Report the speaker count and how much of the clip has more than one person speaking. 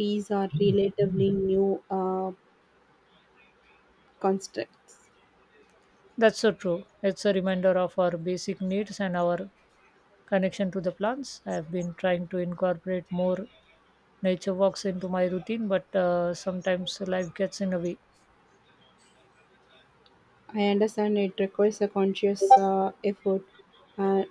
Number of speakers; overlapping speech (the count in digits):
2, no overlap